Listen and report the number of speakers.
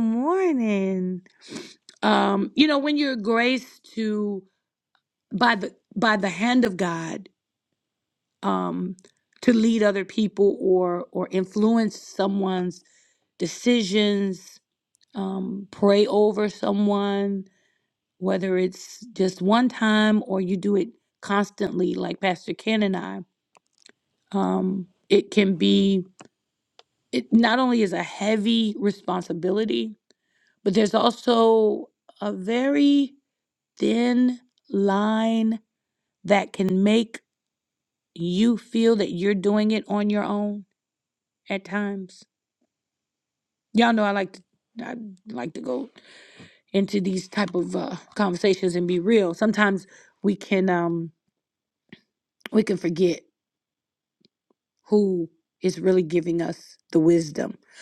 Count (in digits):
1